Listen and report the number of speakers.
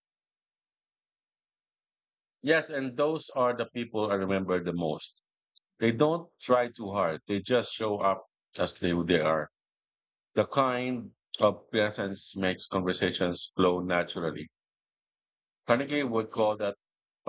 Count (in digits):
1